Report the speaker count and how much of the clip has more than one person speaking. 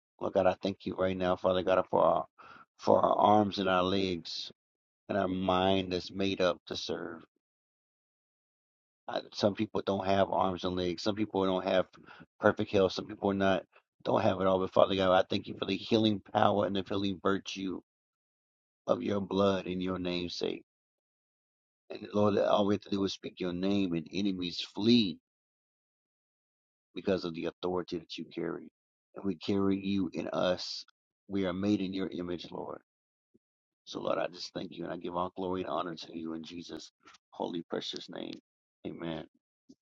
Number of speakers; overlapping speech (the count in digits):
1, no overlap